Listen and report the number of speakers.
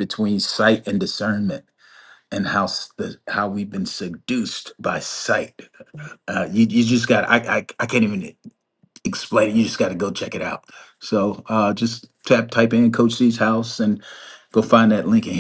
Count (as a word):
one